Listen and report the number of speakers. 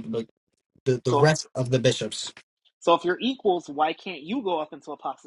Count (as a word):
two